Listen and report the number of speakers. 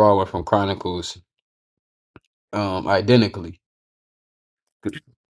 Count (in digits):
1